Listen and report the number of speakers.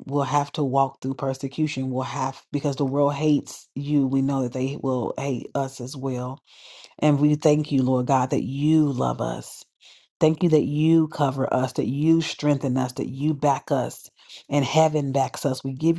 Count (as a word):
one